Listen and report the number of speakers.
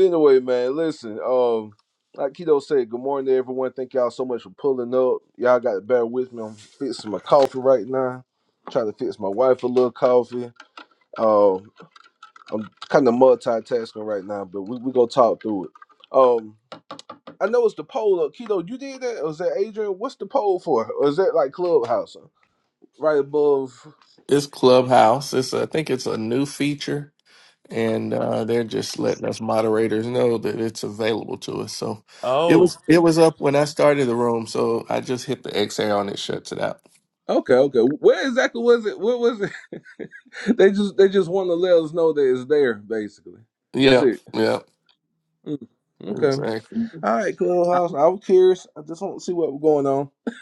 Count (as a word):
two